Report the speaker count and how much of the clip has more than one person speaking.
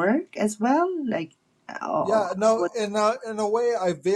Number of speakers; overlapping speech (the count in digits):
2, about 16%